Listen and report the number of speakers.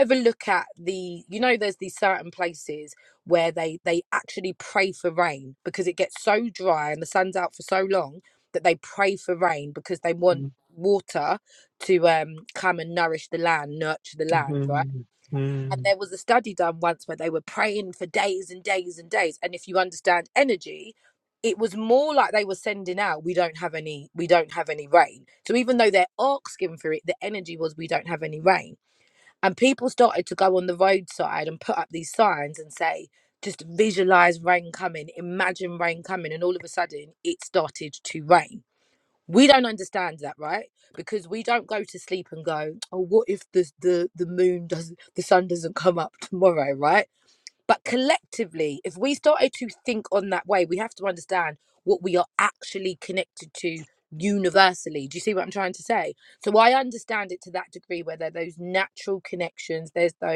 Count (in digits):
1